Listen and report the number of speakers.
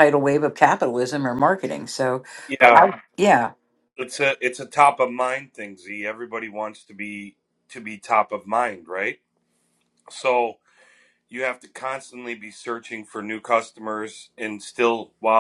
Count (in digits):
2